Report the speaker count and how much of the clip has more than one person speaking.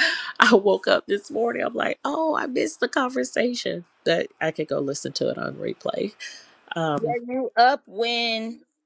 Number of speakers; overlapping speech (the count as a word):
two, about 2%